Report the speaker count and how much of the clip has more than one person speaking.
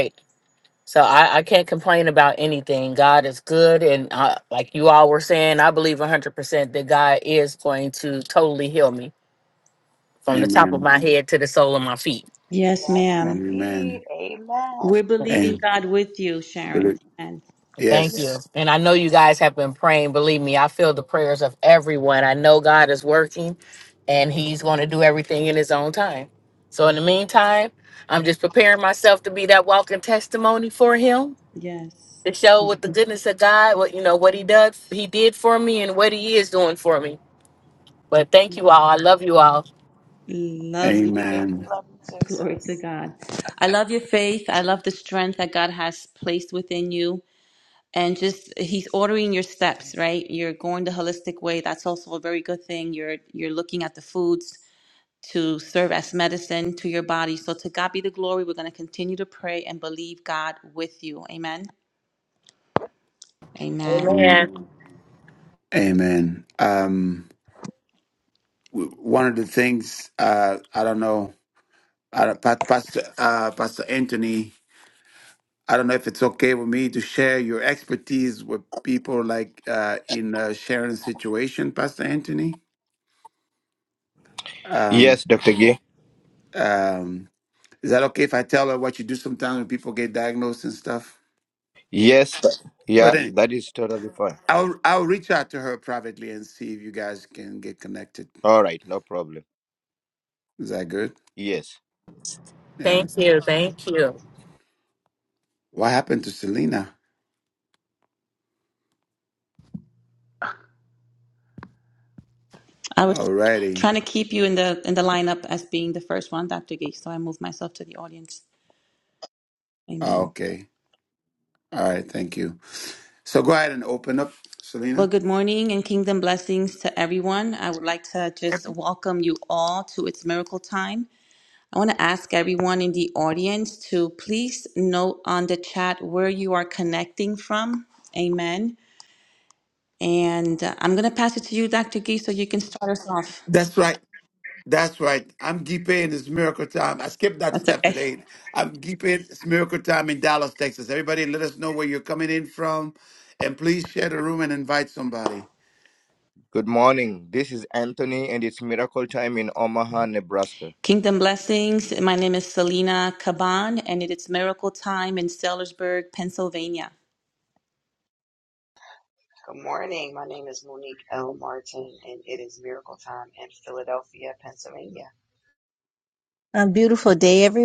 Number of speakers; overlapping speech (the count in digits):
6, about 4%